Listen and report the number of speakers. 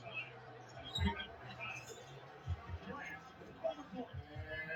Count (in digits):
0